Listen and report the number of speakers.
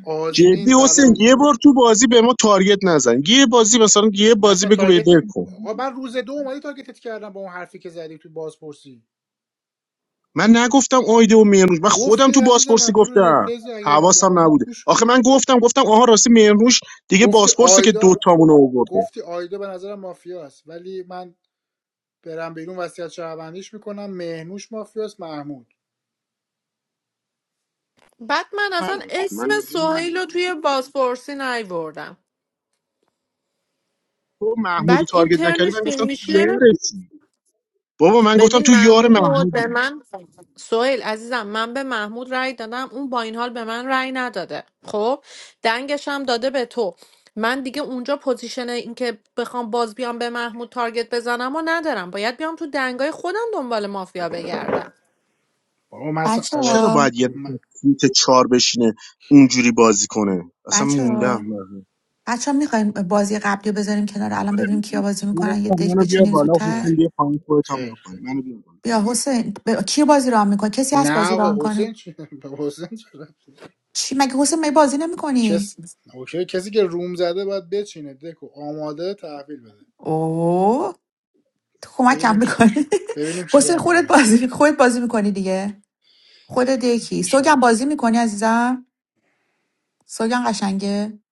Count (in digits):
4